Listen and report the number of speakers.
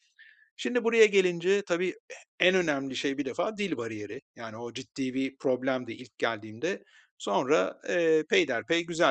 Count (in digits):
1